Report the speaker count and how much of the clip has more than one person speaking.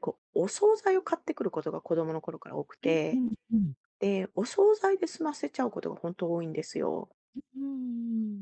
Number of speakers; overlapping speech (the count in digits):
2, about 4%